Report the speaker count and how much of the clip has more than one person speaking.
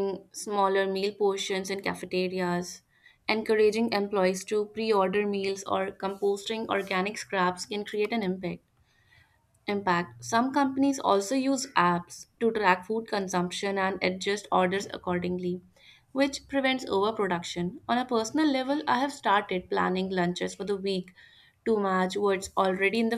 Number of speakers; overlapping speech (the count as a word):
one, no overlap